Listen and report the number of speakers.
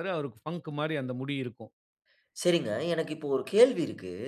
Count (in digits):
2